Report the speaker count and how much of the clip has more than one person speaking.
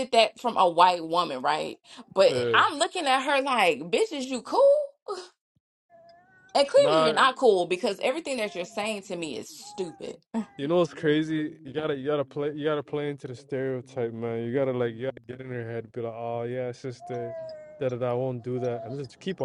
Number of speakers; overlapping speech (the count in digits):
2, about 4%